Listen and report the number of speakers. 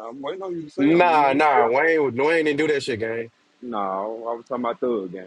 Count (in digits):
2